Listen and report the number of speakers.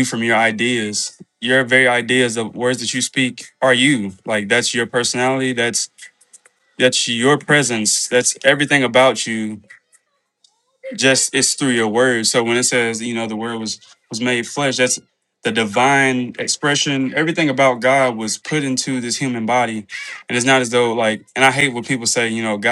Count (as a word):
one